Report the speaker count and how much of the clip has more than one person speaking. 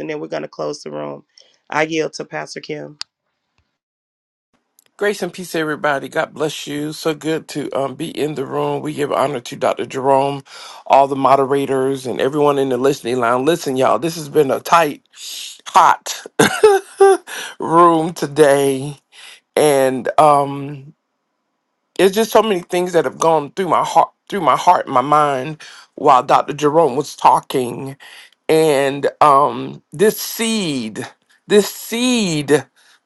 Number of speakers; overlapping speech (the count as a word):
two, no overlap